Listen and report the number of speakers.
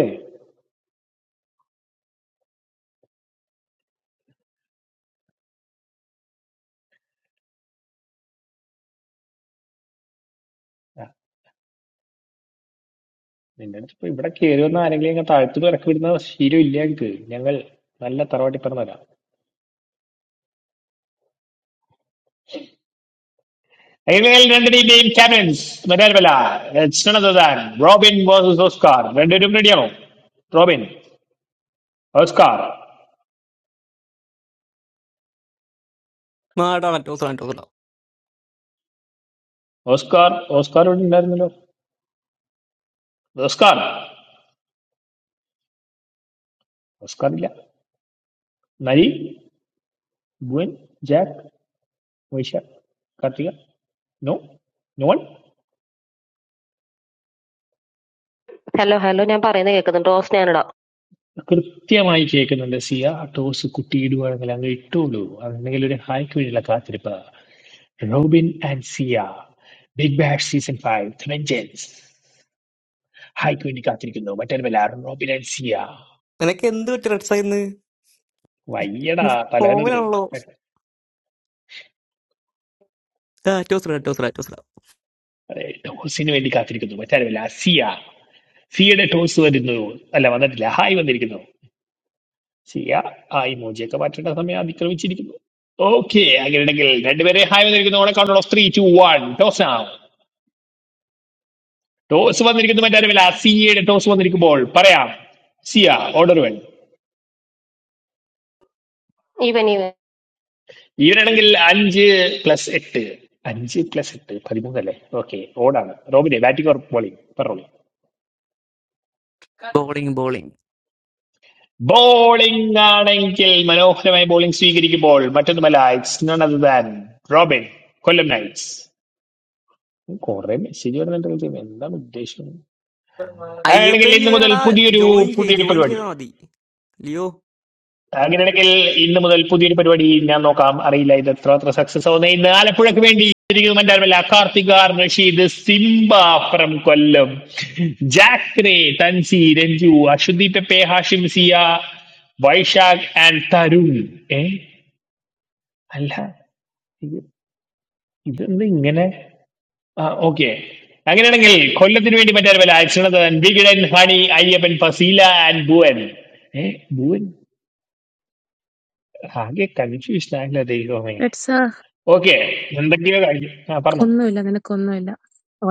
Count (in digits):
4